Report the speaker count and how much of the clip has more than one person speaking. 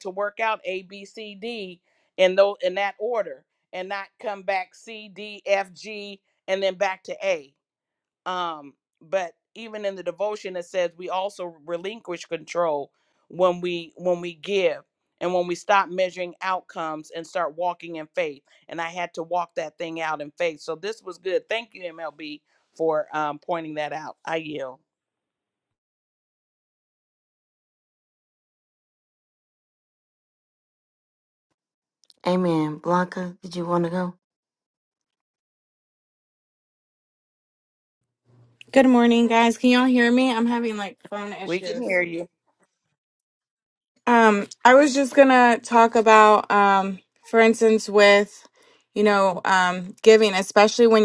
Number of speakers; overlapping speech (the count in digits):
3, about 1%